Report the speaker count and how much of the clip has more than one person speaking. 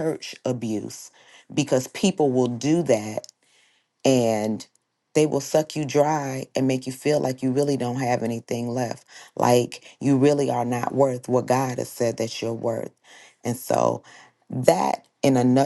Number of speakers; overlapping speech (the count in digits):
1, no overlap